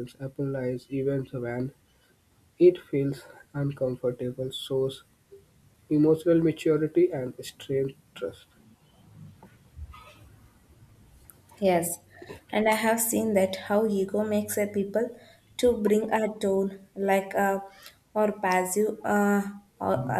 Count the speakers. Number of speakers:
two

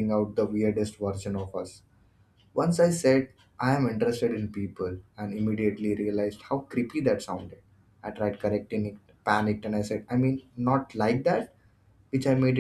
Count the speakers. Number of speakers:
one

